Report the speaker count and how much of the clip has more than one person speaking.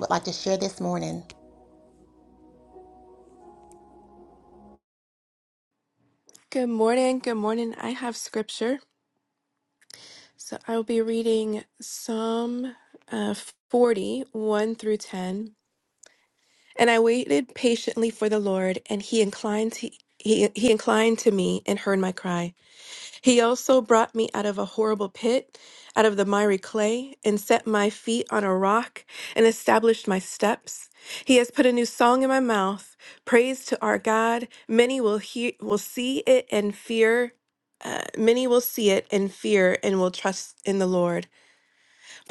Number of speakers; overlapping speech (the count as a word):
two, no overlap